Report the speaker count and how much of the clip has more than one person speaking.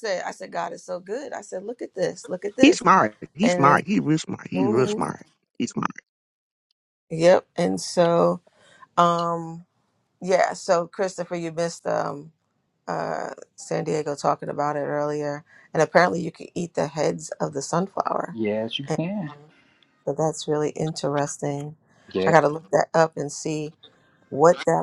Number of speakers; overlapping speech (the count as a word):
three, about 3%